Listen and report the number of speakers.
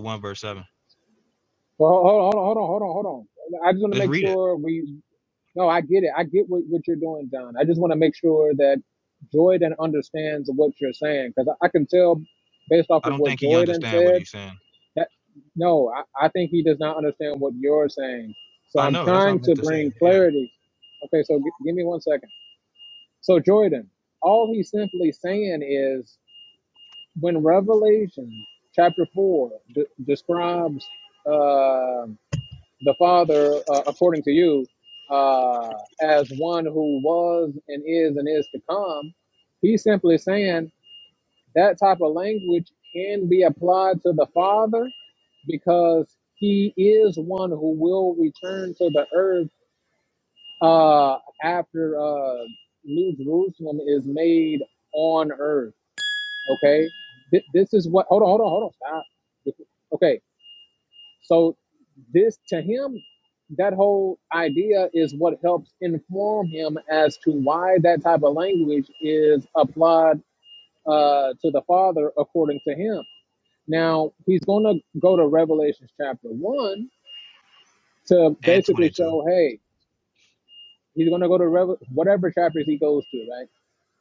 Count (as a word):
two